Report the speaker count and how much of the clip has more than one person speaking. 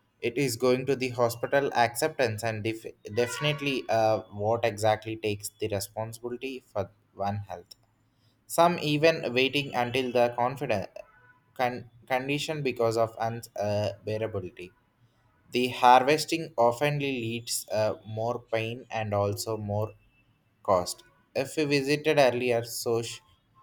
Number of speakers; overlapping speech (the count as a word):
one, no overlap